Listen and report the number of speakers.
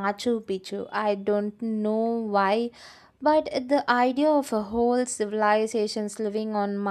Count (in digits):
1